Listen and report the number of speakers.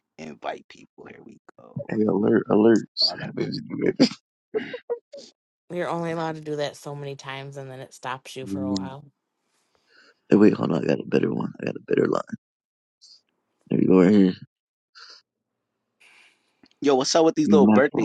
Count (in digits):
3